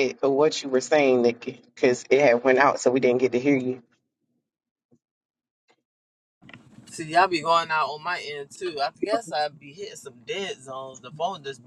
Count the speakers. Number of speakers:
2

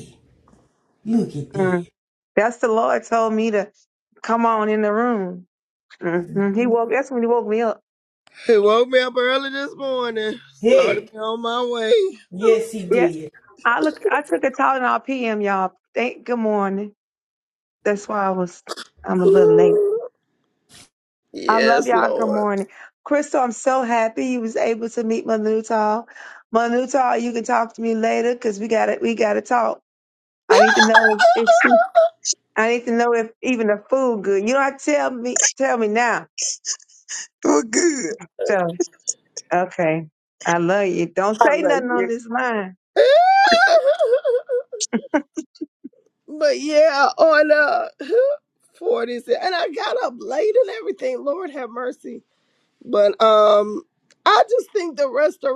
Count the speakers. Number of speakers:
4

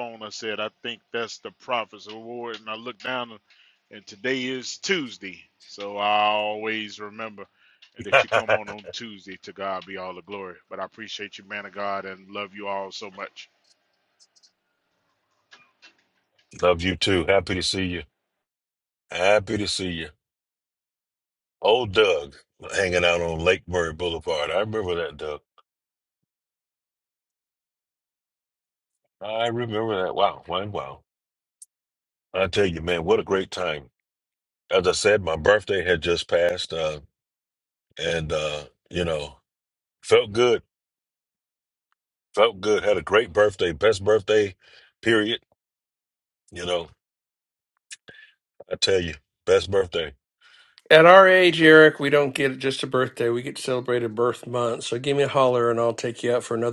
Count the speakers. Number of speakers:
3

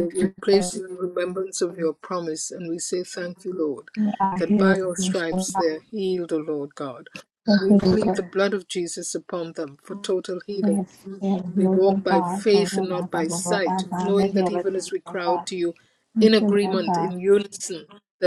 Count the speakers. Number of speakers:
2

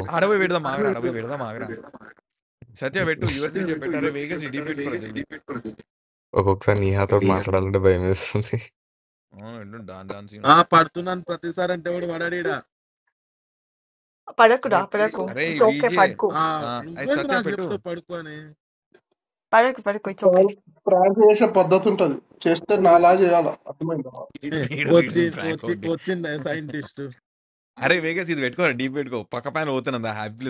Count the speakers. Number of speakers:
5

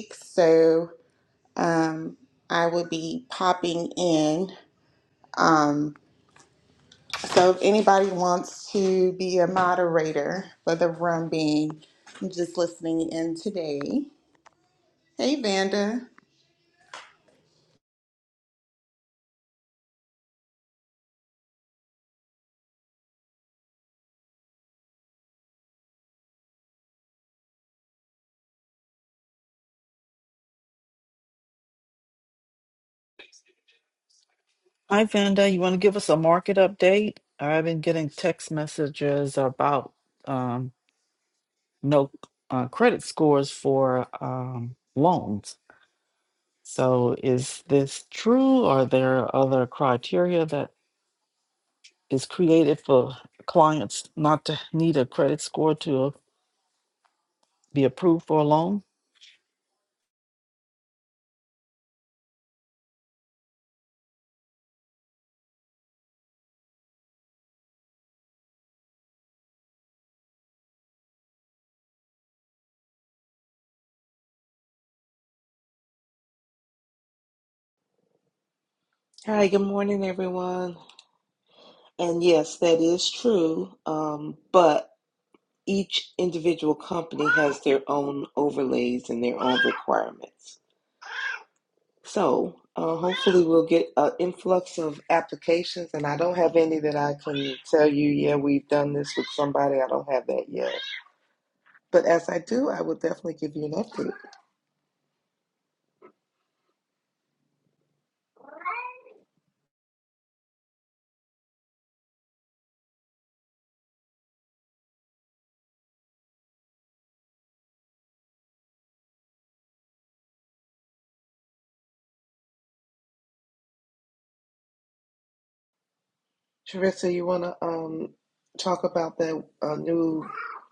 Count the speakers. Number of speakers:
3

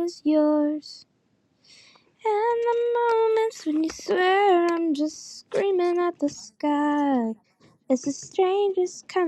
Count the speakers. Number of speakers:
1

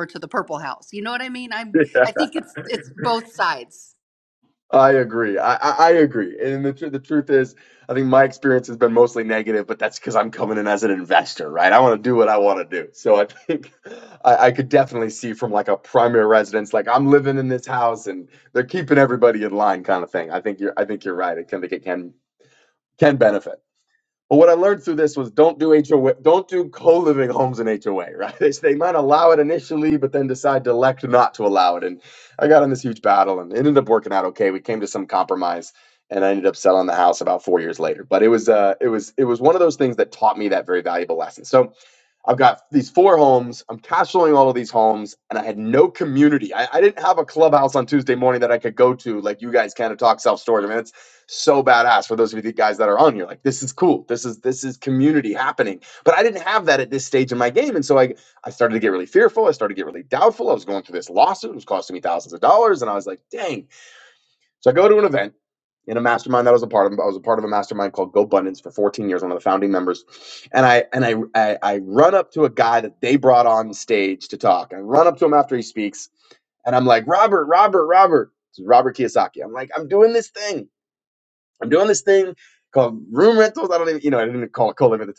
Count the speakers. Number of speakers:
2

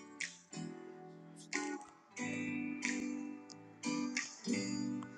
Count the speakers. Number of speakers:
0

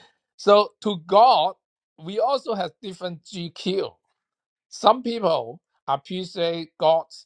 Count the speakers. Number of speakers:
1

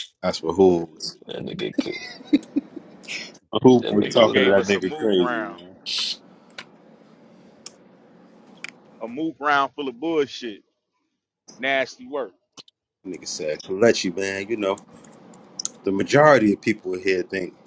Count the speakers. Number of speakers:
3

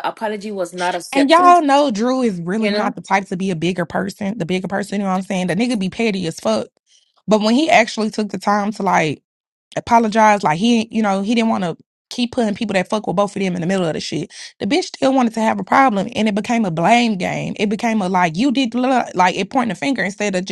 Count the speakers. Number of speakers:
2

